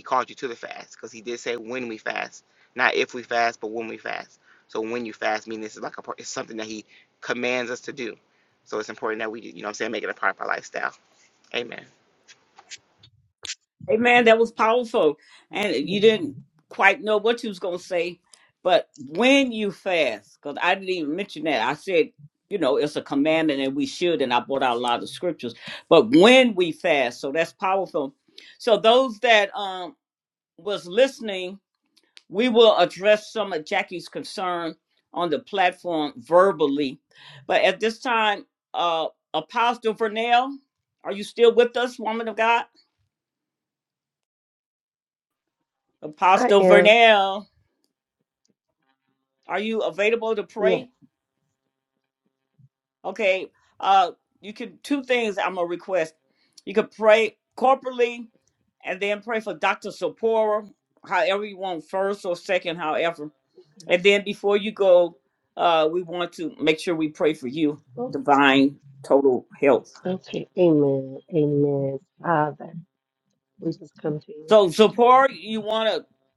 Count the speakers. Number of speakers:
three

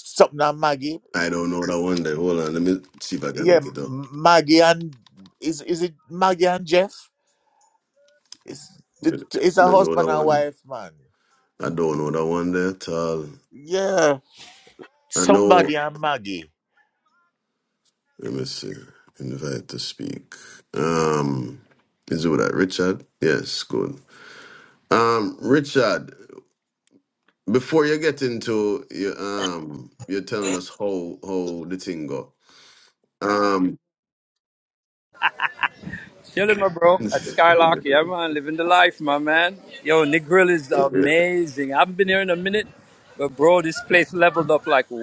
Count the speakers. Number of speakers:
three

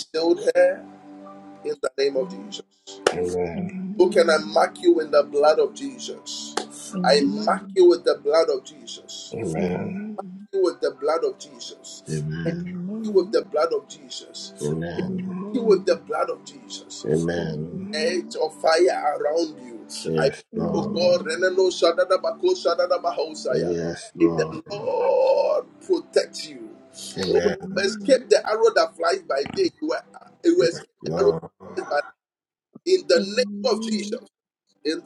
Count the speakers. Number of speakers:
three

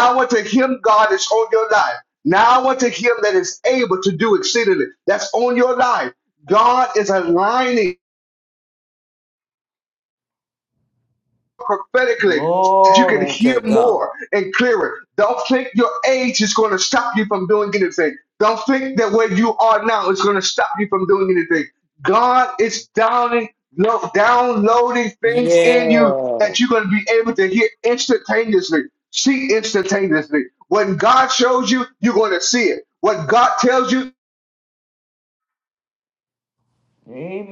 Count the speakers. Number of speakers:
two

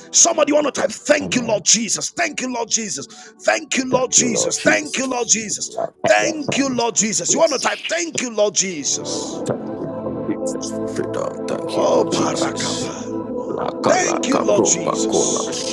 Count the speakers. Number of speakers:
two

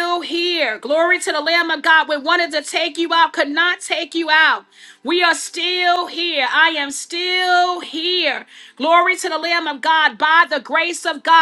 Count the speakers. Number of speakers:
one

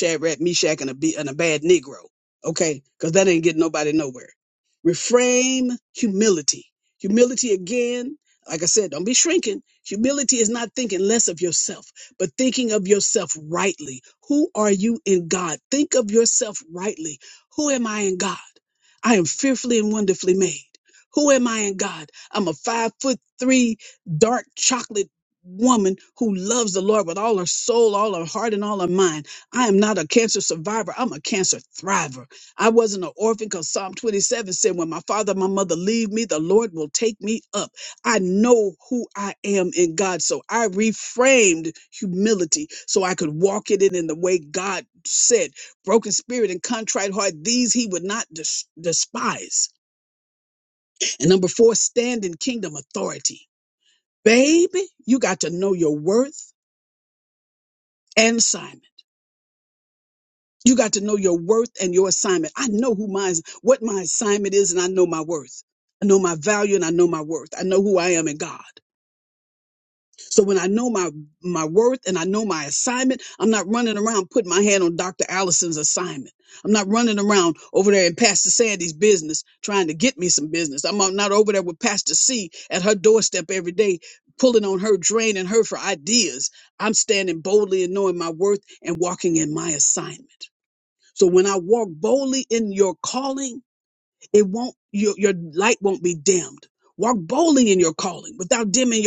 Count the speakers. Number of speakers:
one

